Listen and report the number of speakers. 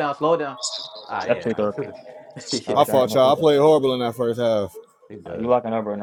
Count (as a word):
three